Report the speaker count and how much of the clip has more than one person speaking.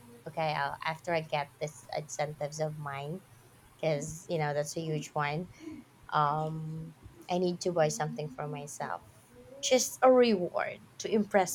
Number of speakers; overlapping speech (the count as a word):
one, no overlap